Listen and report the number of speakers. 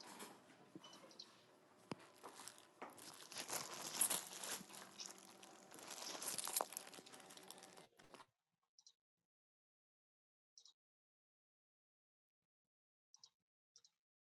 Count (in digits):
0